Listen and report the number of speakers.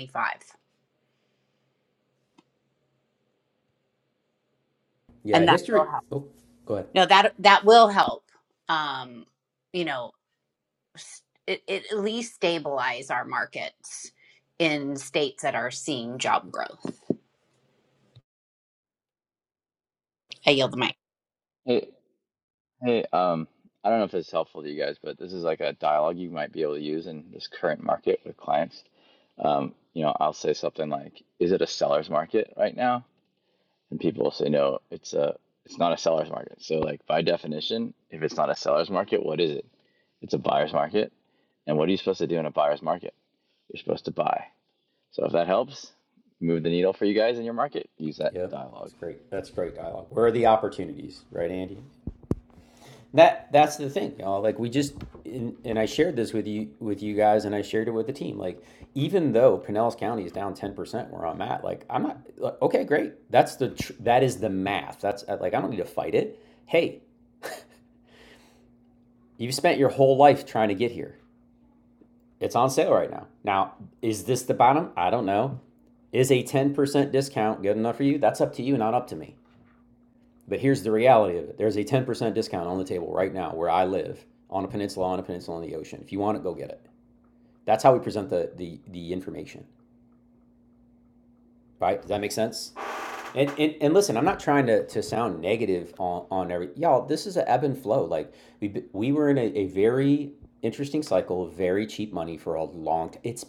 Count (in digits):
3